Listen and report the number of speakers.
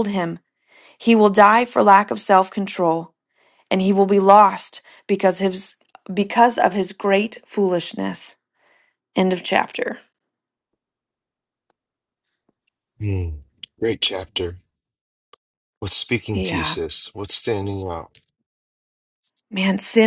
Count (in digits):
2